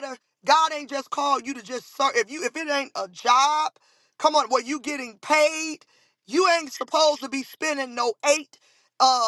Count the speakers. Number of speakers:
1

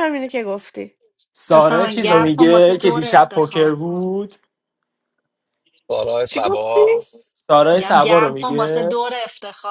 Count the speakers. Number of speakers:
4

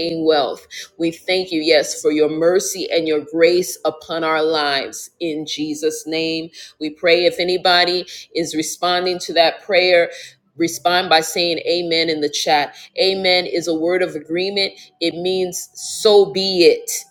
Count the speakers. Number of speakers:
1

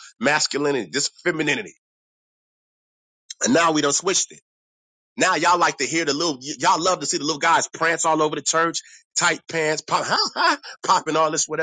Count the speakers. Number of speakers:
1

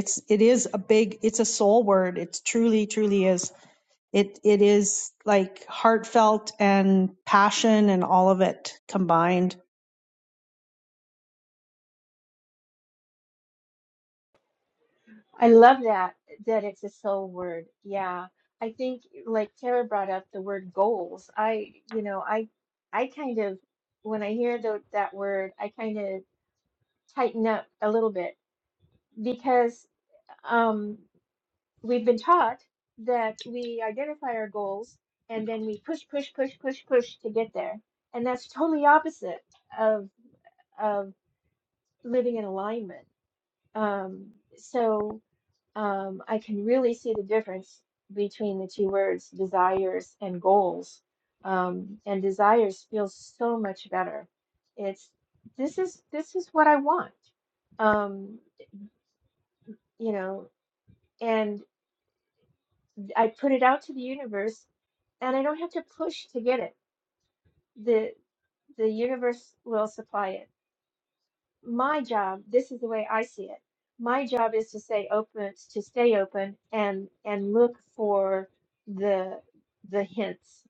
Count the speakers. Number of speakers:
2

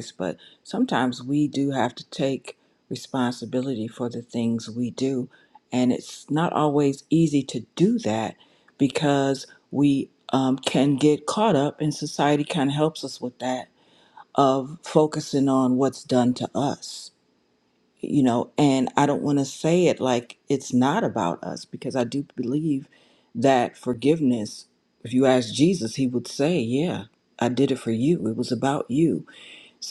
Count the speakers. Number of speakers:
1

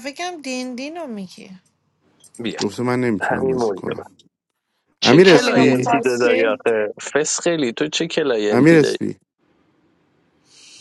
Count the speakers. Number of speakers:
3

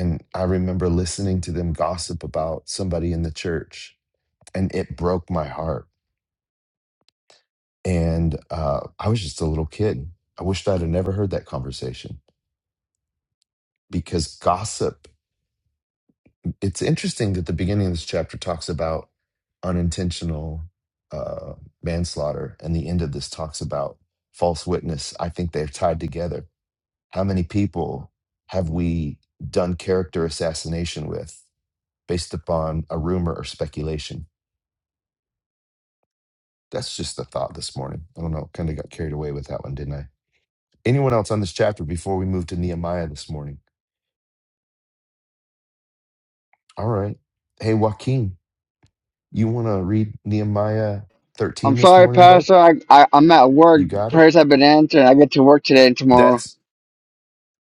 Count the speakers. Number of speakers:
2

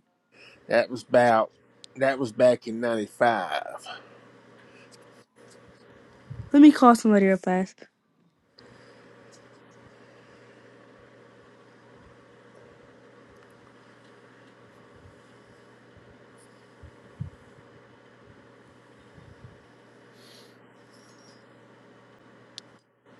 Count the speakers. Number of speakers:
2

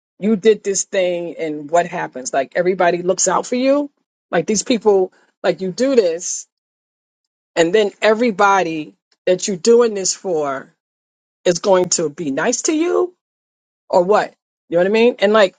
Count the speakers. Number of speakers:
1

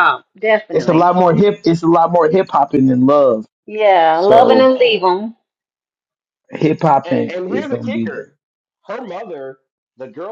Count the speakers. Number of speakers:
3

